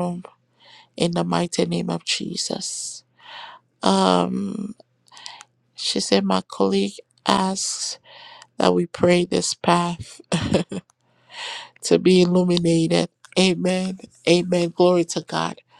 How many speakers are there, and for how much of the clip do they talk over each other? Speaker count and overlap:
1, no overlap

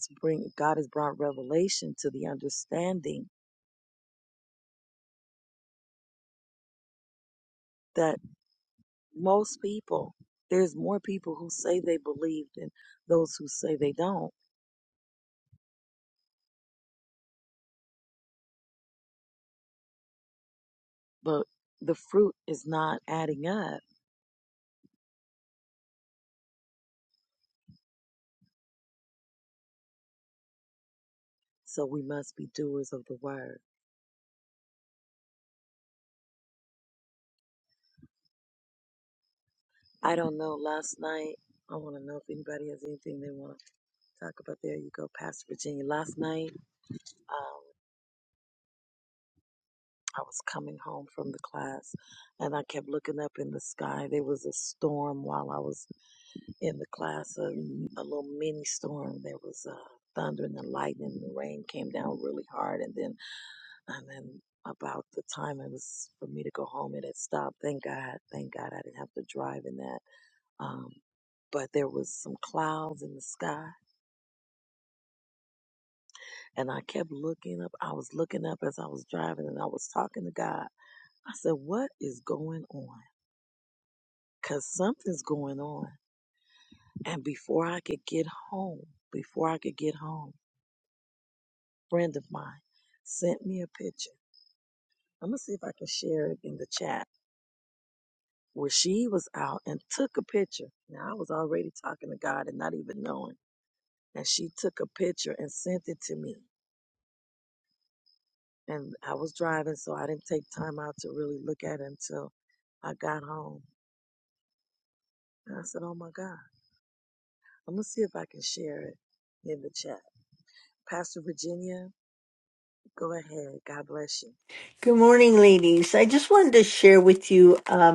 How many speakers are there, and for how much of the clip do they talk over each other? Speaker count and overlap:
2, no overlap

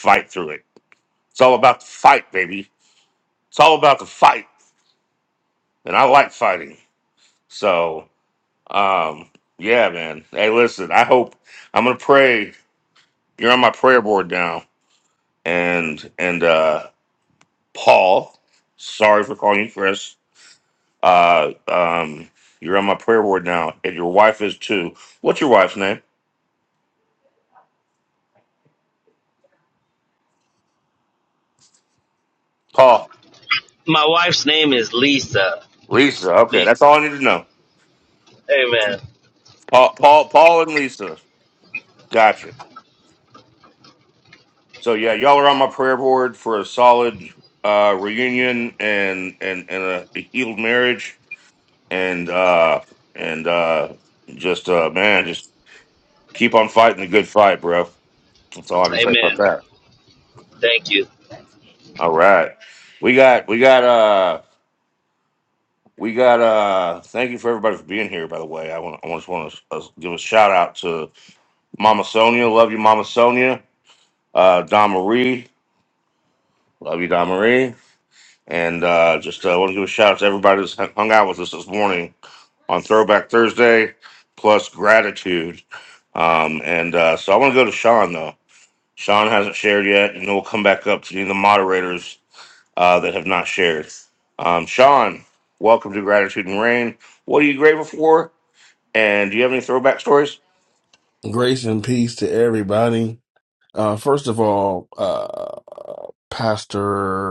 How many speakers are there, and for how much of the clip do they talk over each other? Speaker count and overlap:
3, about 1%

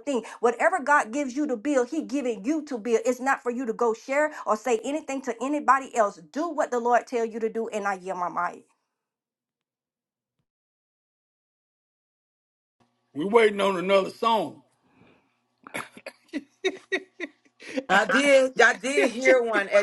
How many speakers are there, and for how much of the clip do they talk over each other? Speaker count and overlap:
3, no overlap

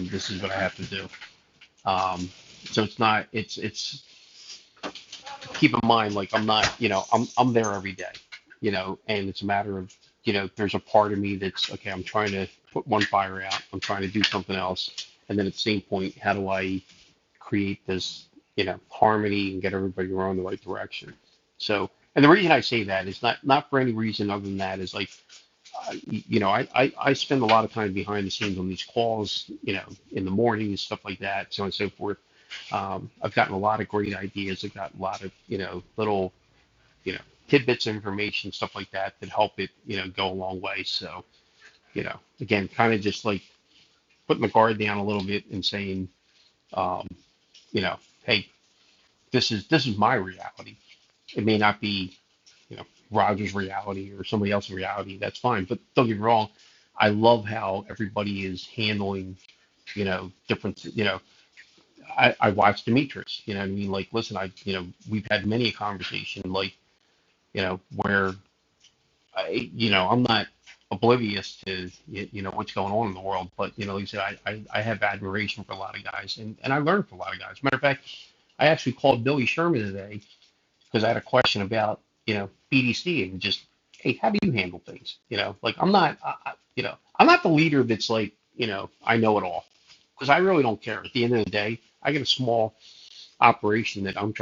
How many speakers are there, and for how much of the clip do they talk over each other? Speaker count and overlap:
1, no overlap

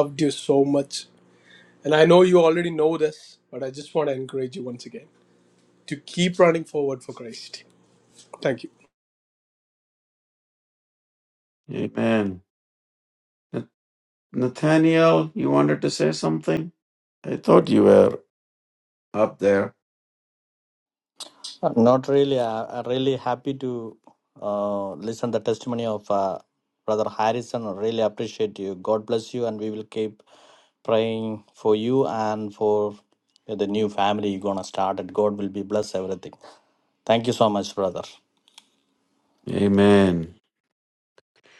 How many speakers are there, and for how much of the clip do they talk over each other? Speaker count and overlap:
3, no overlap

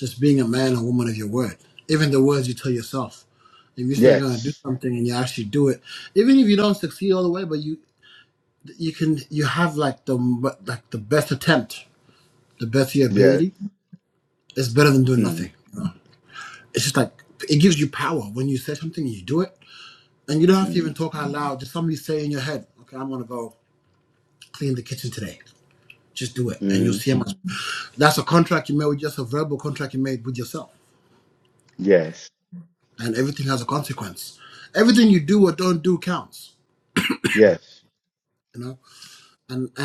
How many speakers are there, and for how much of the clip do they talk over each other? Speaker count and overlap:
2, about 4%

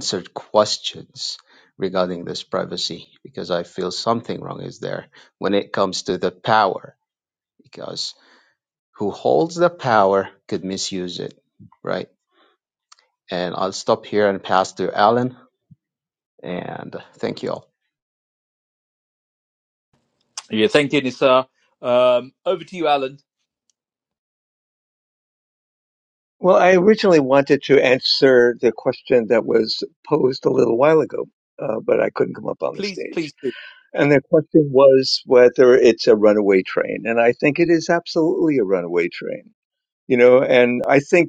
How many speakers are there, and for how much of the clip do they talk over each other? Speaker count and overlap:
3, about 1%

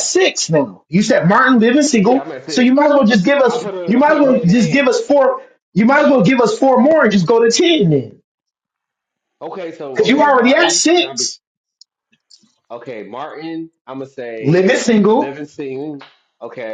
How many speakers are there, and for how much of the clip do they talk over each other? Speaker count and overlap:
2, about 22%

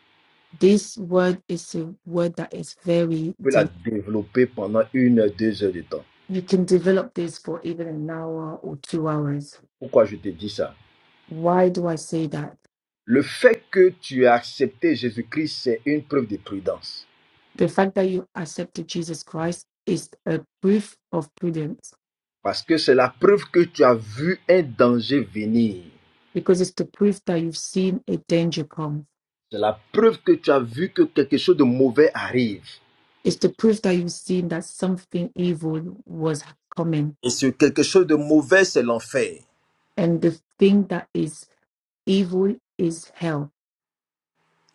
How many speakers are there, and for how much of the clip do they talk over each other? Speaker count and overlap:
2, about 1%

